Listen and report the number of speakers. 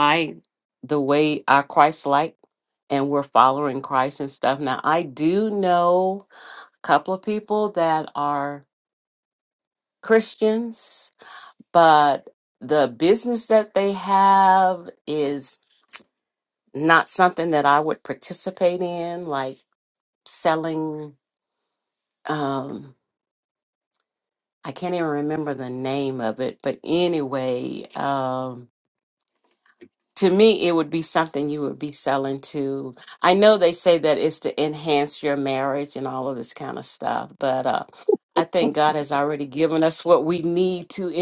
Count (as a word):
one